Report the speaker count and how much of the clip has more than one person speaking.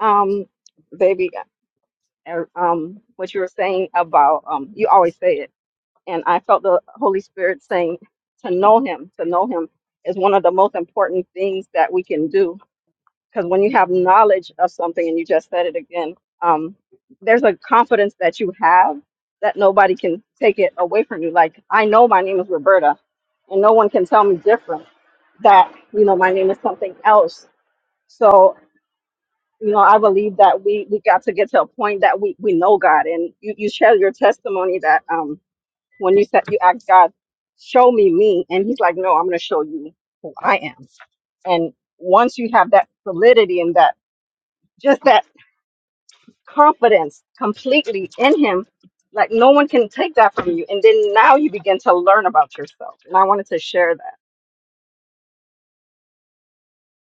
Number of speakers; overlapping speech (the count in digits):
1, no overlap